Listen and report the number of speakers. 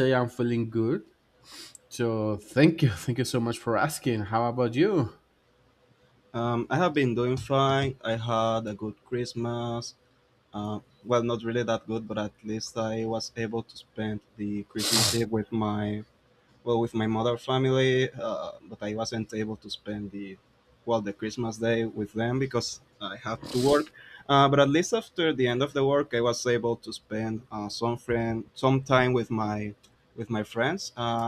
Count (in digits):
2